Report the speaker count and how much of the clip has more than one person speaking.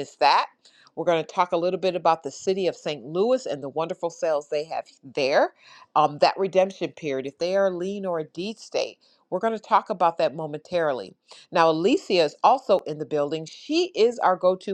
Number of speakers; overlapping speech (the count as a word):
one, no overlap